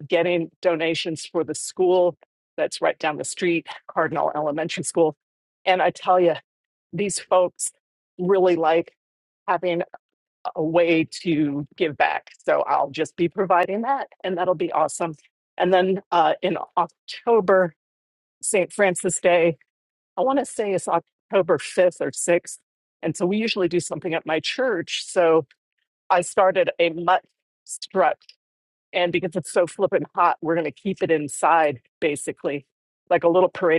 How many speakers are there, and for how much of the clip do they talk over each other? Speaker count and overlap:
1, no overlap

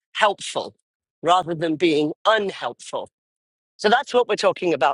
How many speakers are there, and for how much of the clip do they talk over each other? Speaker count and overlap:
1, no overlap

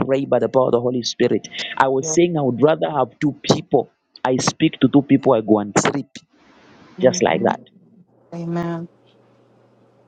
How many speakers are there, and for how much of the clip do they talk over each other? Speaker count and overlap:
2, about 7%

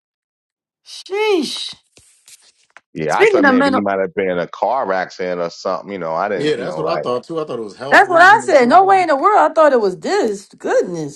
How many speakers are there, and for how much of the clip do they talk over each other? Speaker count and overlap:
3, about 22%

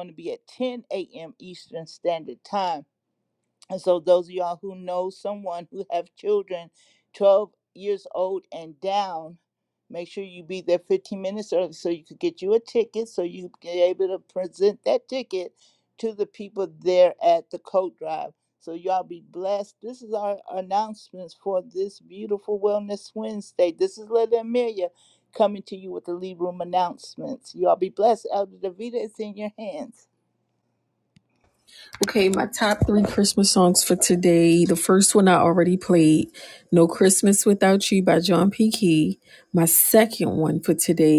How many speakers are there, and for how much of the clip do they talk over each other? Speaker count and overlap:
2, no overlap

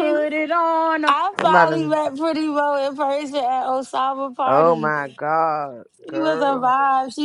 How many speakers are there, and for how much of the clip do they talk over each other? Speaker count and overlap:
3, about 26%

